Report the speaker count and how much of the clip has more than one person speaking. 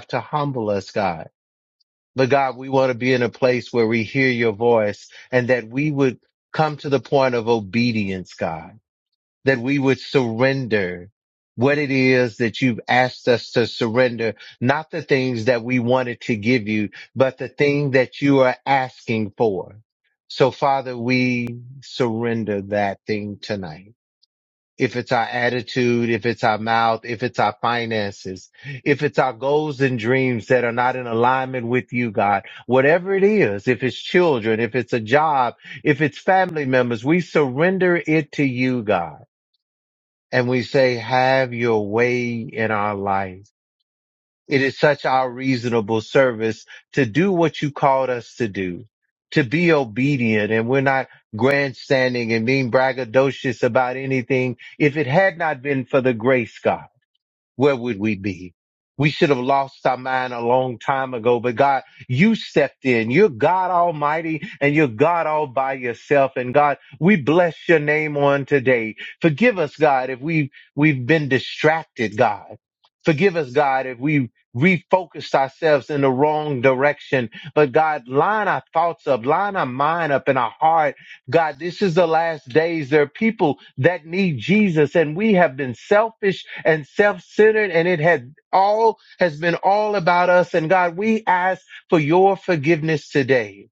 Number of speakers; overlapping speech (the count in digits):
1, no overlap